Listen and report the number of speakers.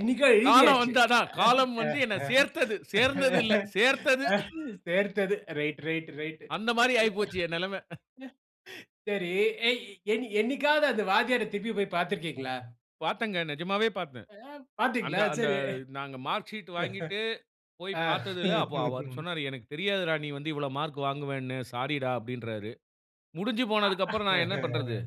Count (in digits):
2